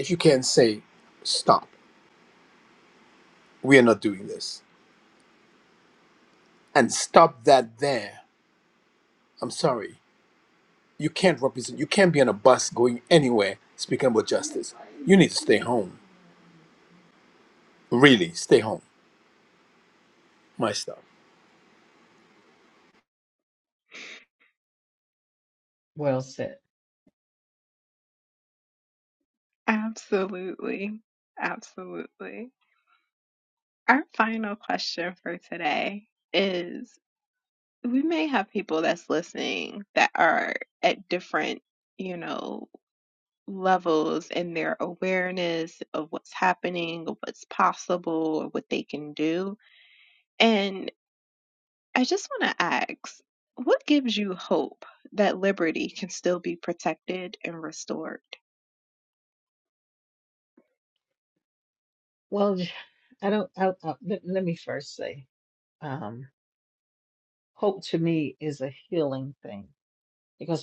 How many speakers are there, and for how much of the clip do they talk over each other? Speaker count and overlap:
3, no overlap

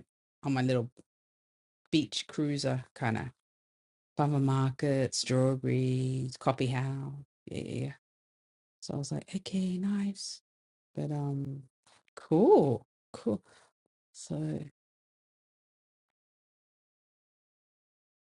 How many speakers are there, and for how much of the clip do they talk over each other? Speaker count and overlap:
1, no overlap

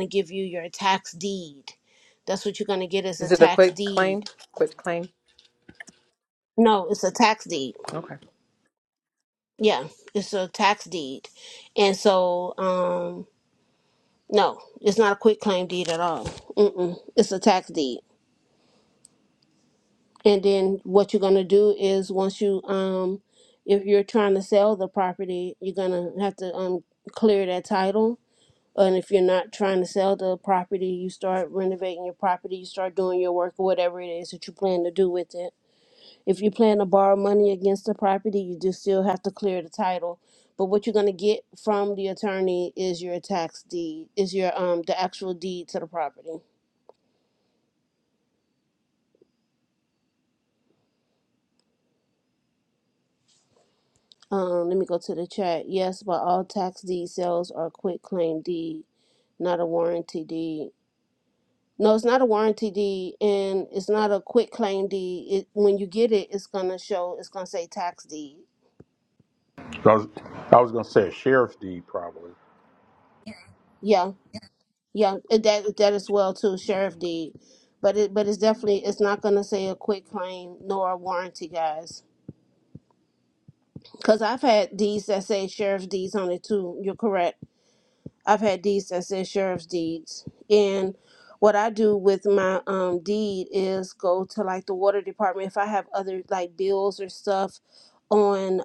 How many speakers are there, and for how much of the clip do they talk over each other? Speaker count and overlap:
3, about 1%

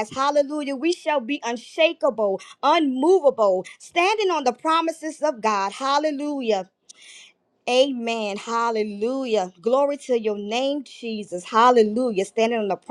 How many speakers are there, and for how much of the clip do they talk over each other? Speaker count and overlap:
1, no overlap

